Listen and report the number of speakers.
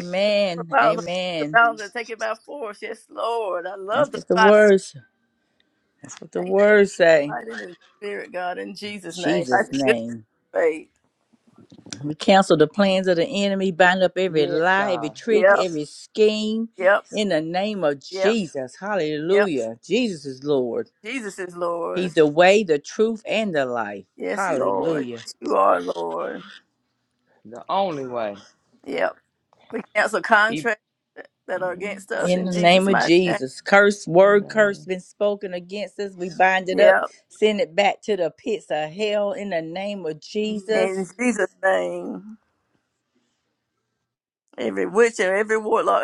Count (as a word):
three